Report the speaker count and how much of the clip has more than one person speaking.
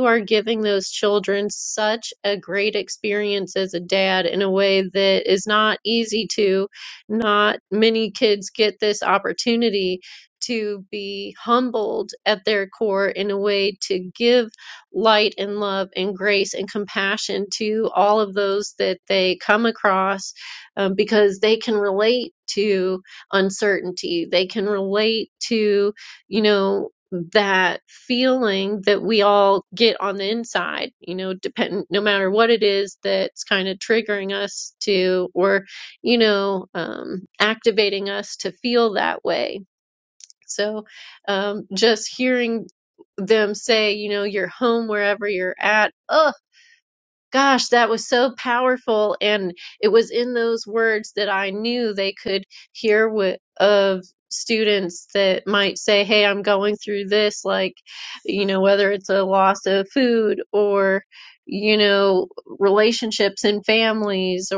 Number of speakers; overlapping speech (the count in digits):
1, no overlap